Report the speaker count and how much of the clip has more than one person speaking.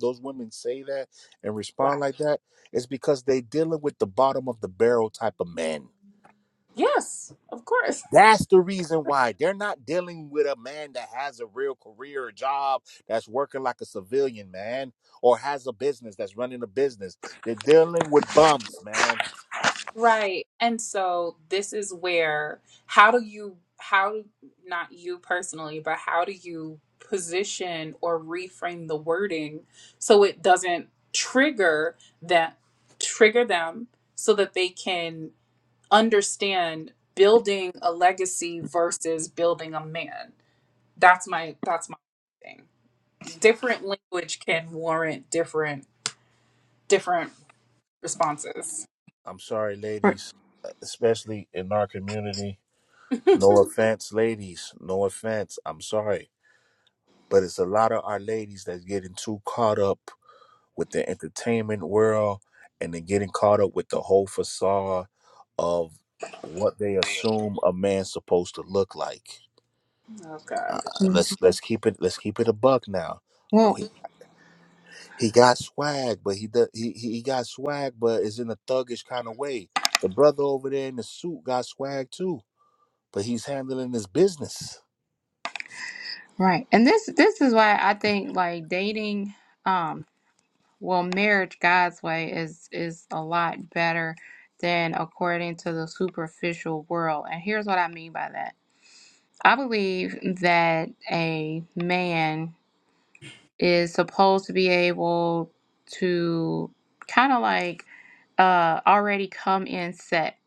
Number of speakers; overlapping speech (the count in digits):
3, about 1%